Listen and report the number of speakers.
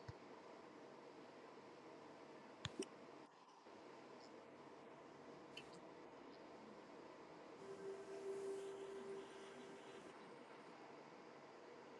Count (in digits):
0